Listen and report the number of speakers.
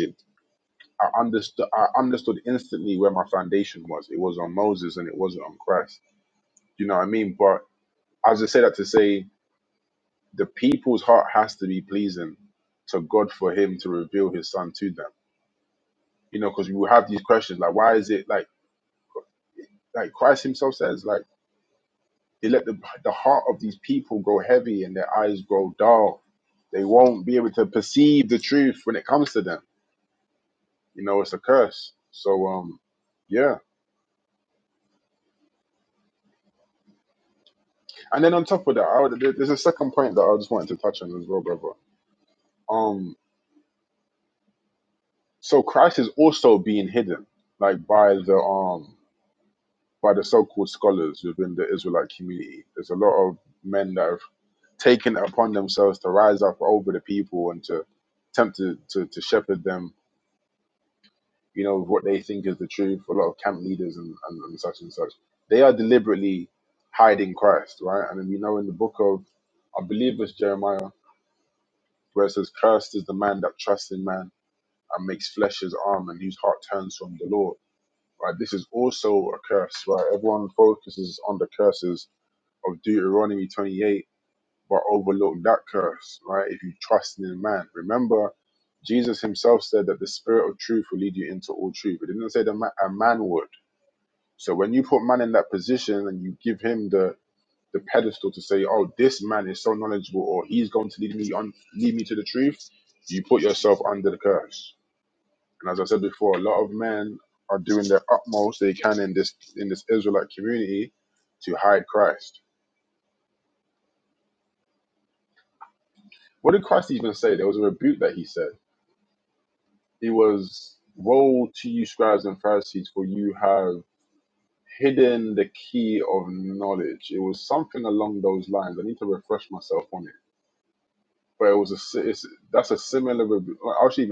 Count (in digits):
1